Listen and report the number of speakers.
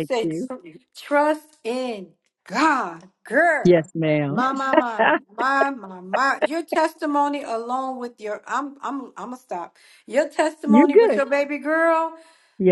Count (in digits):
2